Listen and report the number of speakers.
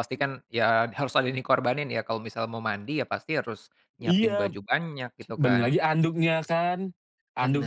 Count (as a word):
two